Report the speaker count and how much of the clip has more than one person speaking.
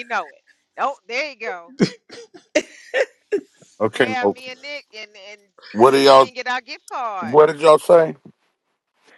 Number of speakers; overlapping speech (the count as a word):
two, about 10%